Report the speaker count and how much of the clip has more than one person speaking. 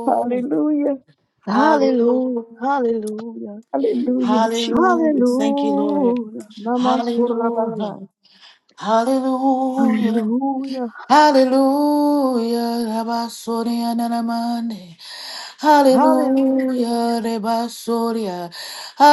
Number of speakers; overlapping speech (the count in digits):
3, about 22%